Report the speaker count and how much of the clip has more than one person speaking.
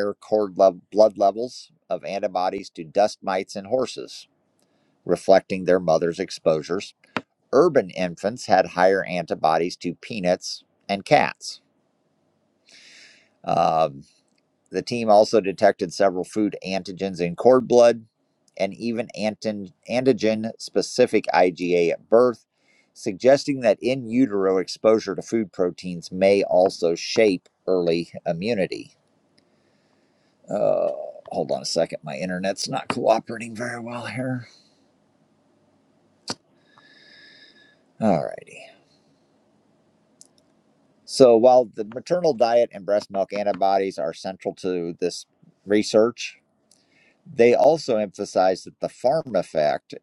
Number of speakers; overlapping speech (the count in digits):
1, no overlap